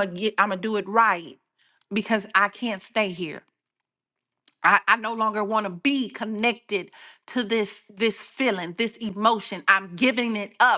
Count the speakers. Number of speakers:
one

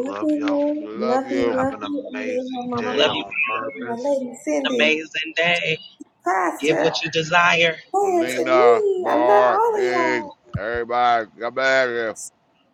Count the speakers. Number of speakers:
four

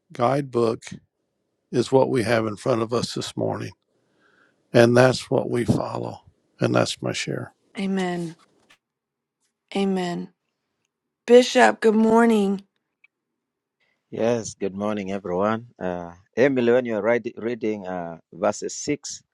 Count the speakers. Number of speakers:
three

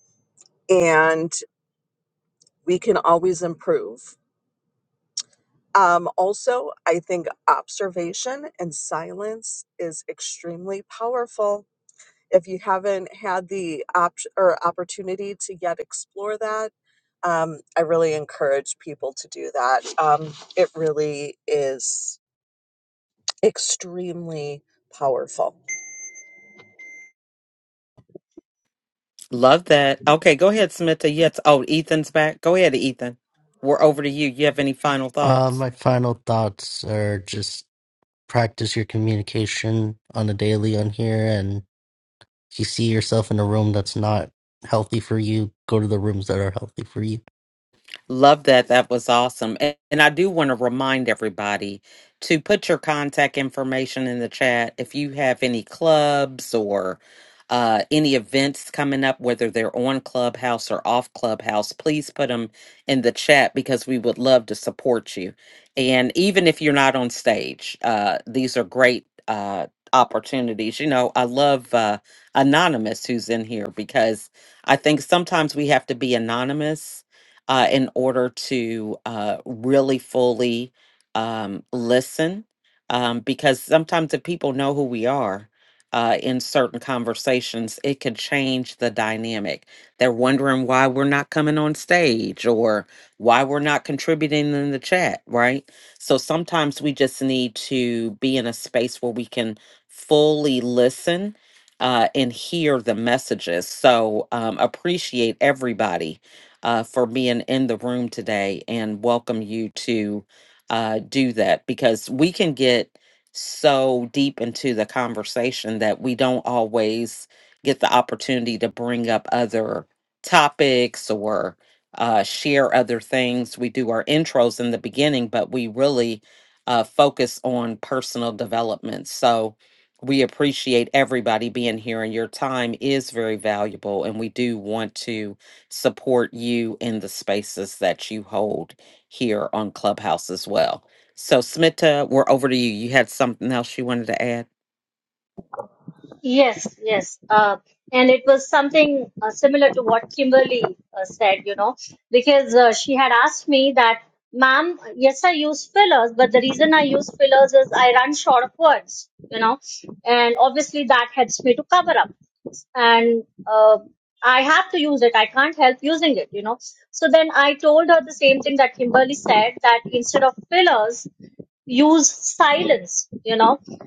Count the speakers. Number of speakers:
four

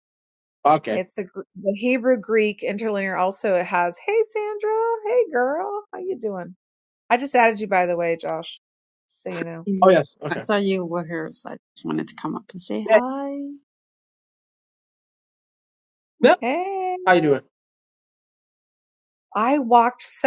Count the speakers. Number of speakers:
three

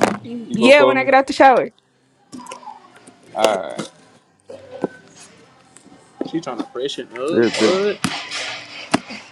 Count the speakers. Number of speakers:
three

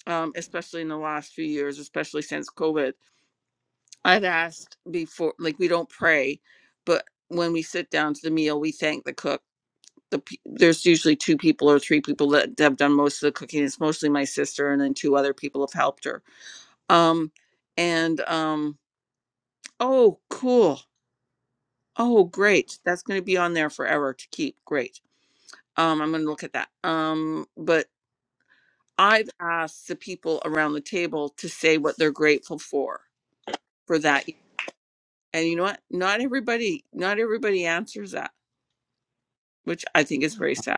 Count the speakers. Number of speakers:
one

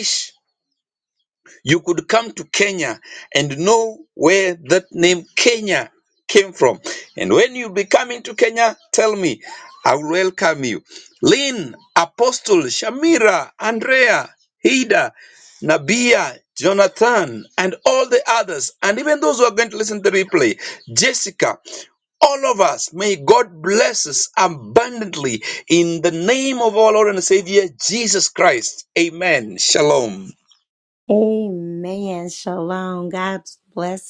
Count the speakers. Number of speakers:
two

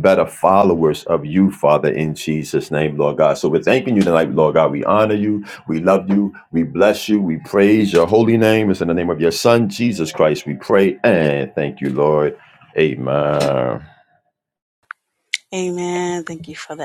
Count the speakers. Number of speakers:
two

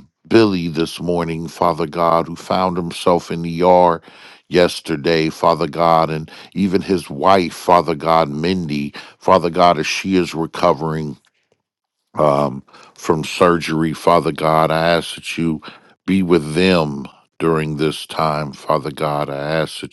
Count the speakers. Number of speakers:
one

